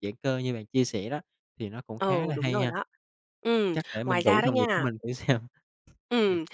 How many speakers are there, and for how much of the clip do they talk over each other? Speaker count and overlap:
two, about 28%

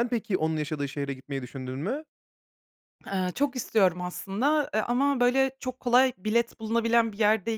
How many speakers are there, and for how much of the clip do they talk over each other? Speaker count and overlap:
two, no overlap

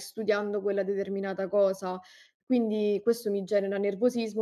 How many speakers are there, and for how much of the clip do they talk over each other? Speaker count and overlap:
one, no overlap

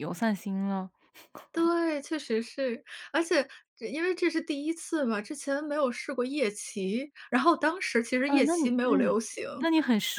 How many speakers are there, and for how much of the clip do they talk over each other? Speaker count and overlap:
two, about 9%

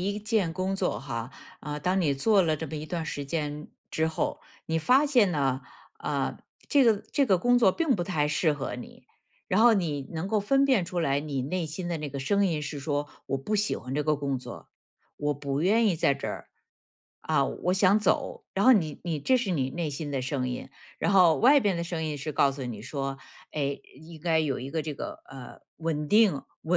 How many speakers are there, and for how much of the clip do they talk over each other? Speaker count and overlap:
one, no overlap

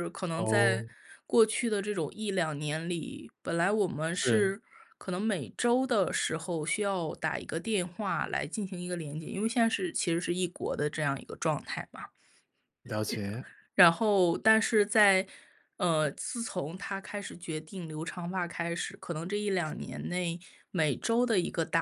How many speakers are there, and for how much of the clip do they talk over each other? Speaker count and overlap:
two, about 4%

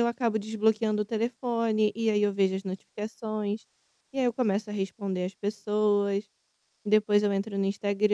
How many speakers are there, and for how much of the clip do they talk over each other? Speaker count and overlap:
one, no overlap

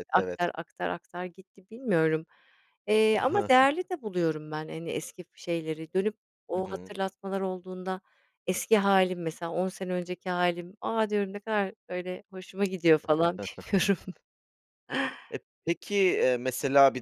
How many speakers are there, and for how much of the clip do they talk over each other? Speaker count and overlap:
two, about 4%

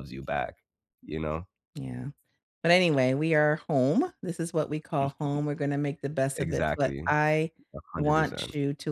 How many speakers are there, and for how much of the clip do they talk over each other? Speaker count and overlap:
two, about 11%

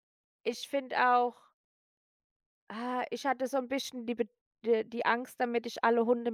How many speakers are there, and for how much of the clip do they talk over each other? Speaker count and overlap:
one, no overlap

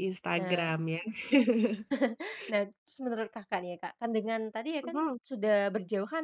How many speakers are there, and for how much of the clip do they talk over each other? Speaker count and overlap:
two, about 11%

